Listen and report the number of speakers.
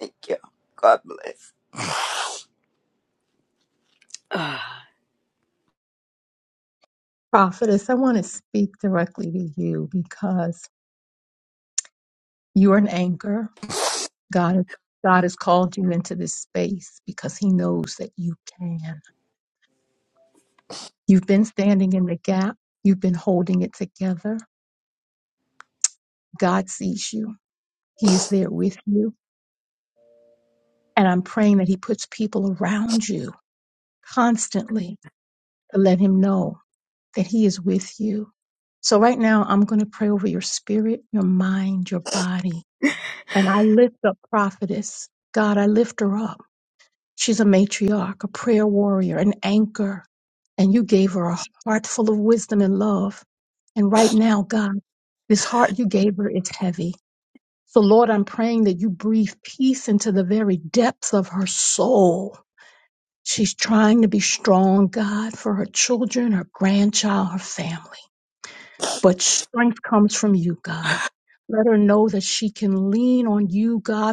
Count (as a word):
two